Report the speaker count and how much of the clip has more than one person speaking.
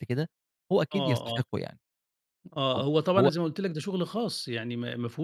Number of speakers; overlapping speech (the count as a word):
two, about 14%